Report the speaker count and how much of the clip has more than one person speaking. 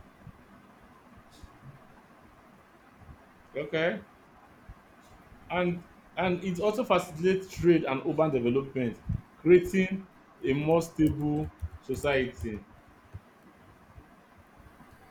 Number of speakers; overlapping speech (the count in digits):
1, no overlap